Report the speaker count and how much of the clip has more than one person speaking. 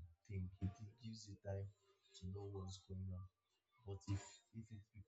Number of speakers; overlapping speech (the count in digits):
1, no overlap